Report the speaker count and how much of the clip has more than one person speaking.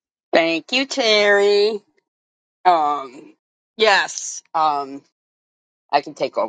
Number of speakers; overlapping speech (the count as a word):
one, no overlap